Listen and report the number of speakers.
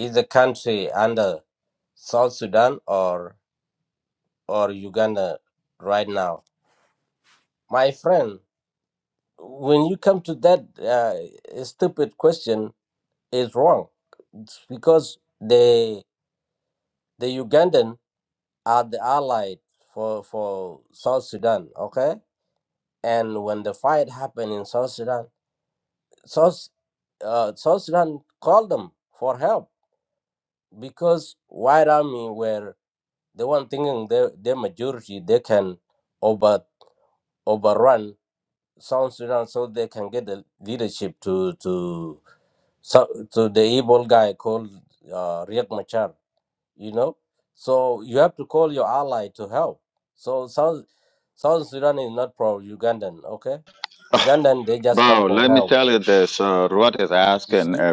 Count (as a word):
two